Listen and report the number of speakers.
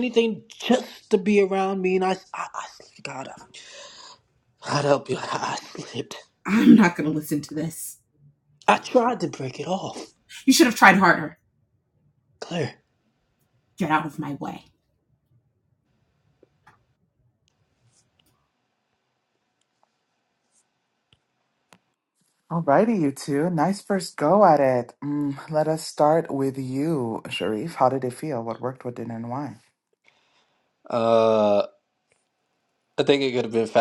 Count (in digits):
3